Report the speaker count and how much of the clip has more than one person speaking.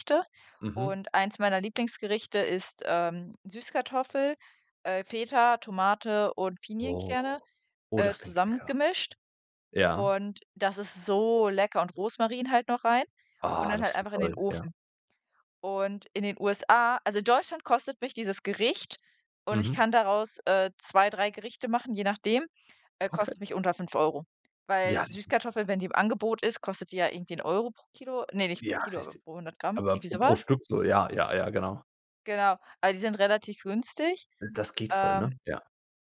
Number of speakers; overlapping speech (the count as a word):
two, about 14%